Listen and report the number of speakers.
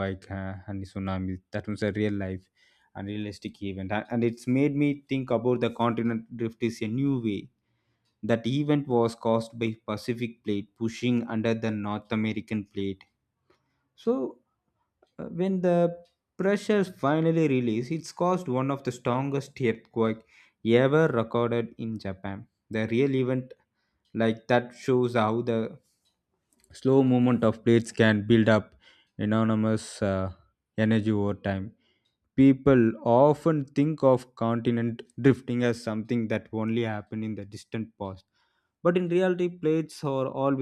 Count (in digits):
1